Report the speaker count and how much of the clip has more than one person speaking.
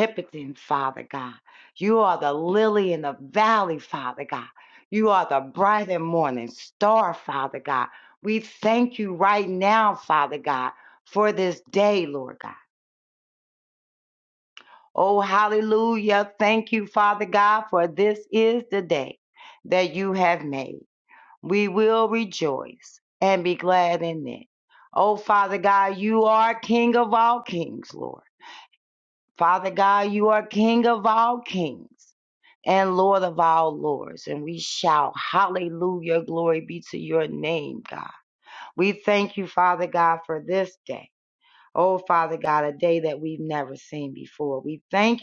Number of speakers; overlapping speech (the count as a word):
one, no overlap